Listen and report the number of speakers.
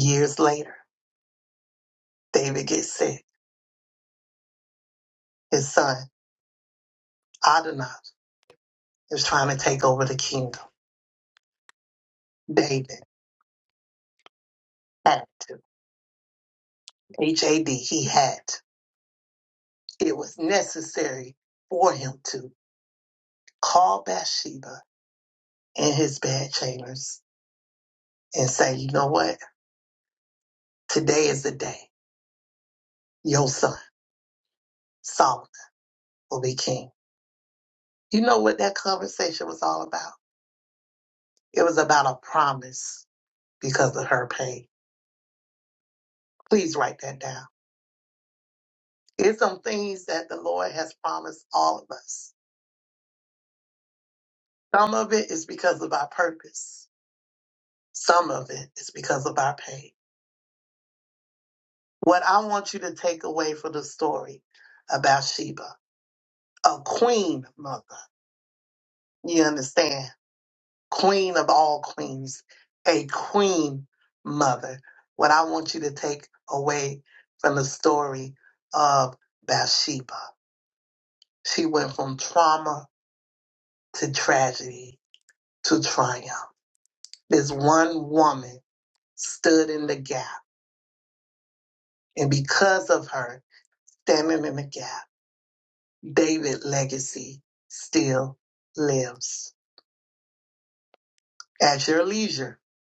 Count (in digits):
1